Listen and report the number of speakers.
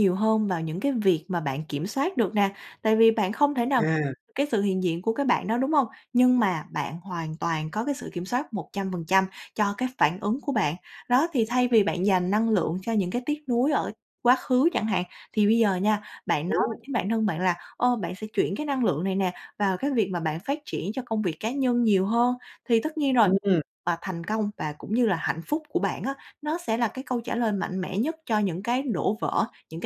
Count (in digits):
2